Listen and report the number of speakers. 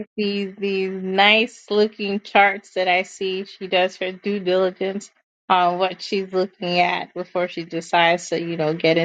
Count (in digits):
1